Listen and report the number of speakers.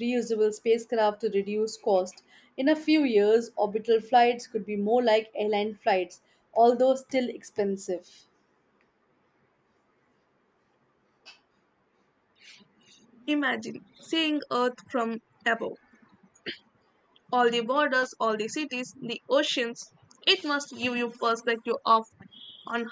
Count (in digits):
2